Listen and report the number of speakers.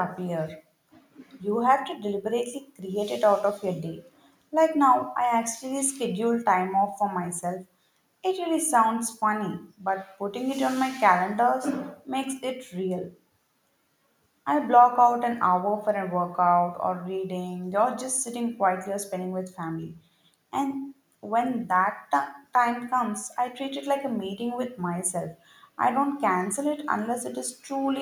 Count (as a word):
one